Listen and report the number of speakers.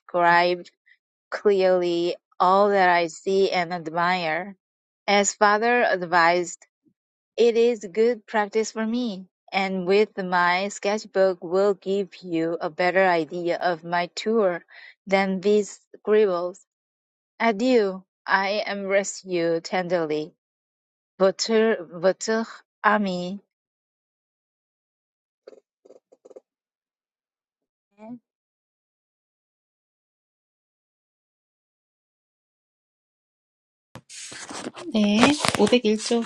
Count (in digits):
2